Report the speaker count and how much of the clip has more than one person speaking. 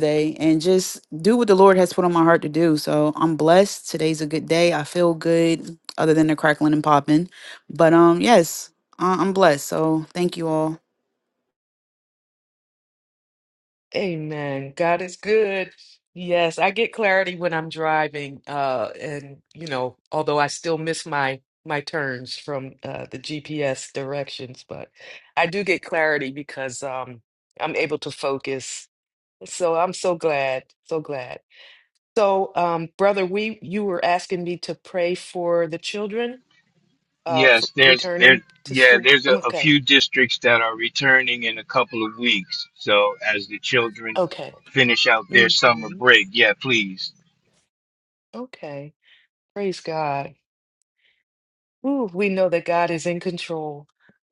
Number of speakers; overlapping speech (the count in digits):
3, about 6%